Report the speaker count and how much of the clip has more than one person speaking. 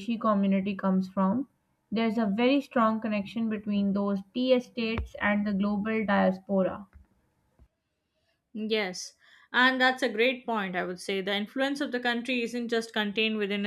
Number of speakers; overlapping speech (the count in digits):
2, no overlap